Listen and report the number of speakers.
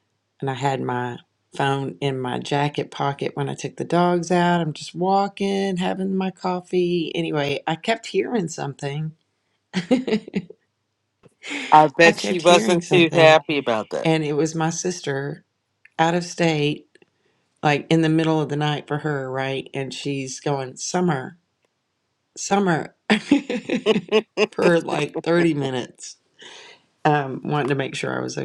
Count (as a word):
two